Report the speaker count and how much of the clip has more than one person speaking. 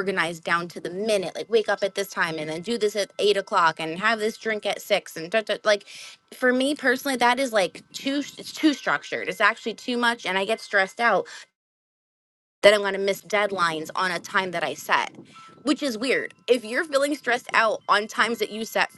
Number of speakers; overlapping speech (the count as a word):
one, no overlap